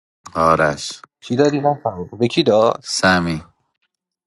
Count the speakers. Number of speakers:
2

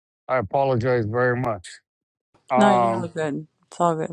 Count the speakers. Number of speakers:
2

